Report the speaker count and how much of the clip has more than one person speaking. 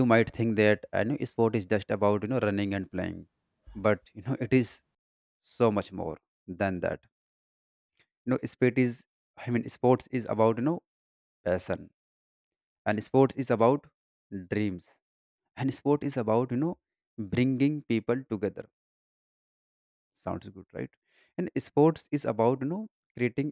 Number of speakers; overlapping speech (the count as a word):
one, no overlap